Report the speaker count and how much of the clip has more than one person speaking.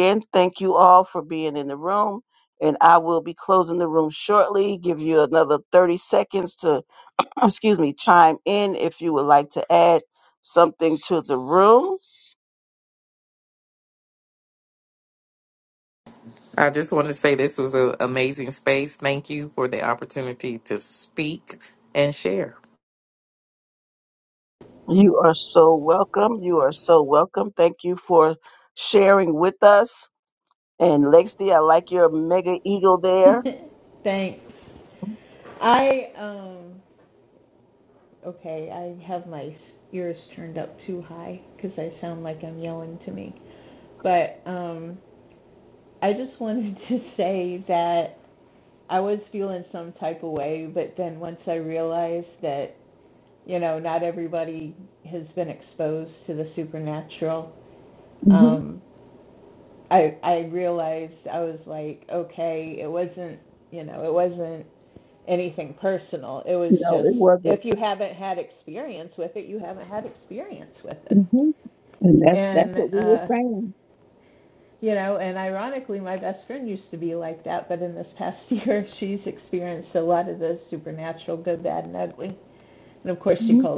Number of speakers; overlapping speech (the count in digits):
3, about 3%